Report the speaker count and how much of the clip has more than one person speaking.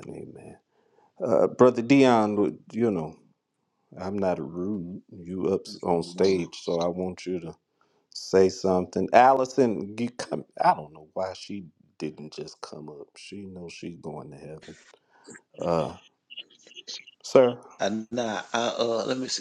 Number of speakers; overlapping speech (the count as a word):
two, about 2%